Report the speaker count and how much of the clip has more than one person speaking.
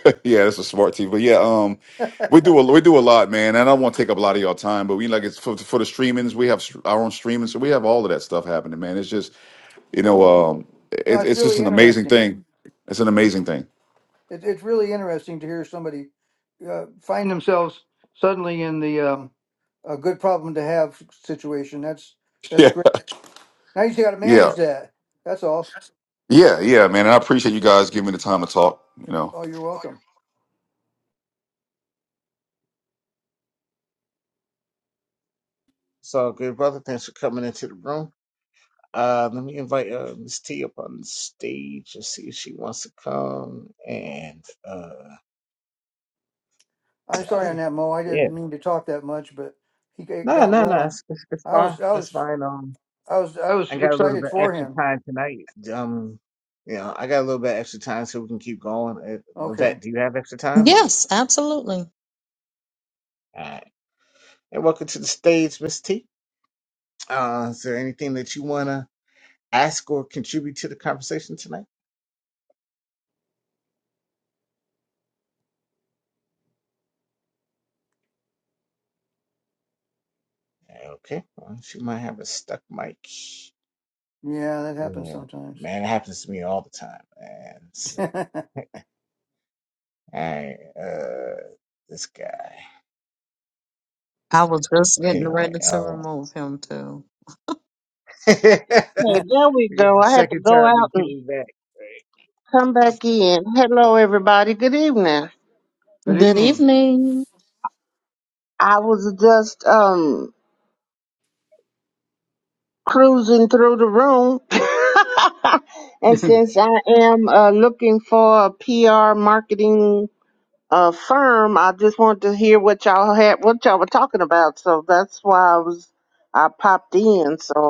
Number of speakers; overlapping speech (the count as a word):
five, about 6%